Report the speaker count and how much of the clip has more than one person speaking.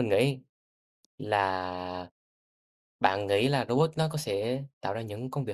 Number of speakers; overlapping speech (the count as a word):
one, no overlap